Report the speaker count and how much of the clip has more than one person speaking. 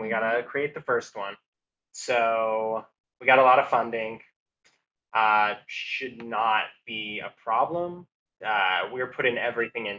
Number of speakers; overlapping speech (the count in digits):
1, no overlap